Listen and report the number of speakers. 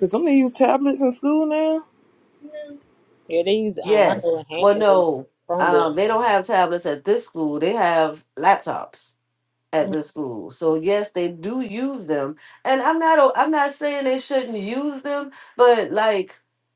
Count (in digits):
3